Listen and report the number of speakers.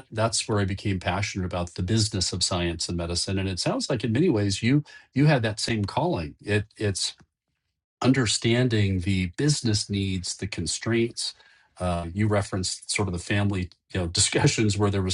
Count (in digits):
1